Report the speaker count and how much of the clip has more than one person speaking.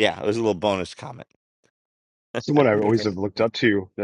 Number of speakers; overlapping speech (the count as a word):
two, no overlap